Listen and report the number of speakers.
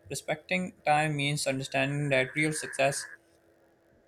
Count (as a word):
one